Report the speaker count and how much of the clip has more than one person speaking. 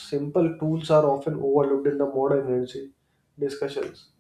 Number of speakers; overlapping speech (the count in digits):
1, no overlap